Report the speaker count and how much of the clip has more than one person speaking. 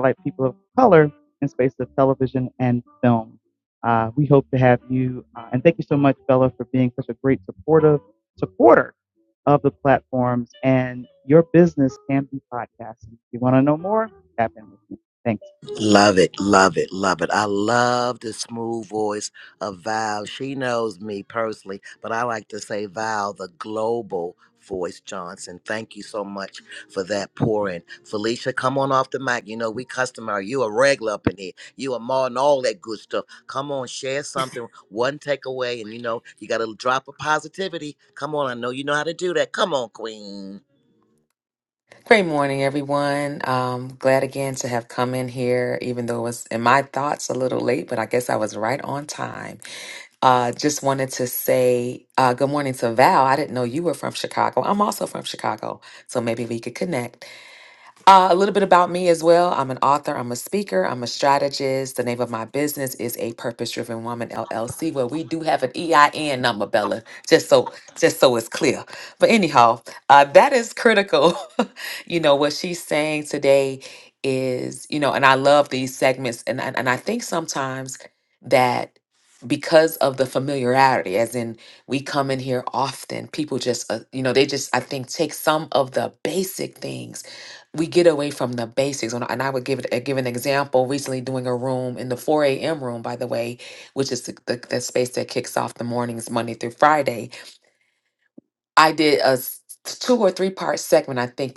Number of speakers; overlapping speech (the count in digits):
3, no overlap